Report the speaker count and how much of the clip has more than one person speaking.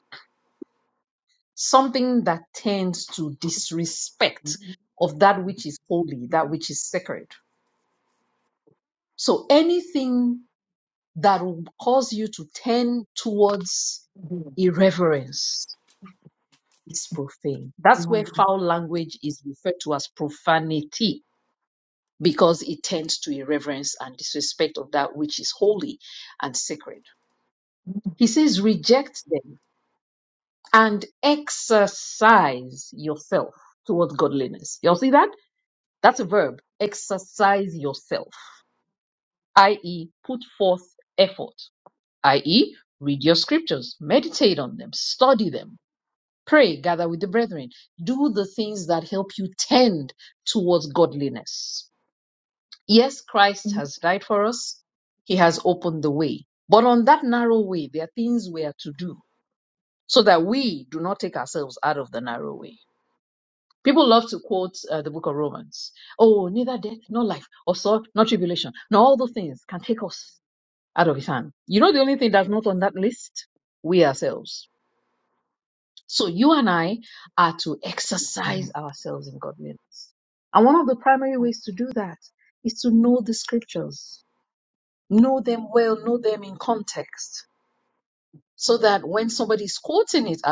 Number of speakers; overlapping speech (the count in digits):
1, no overlap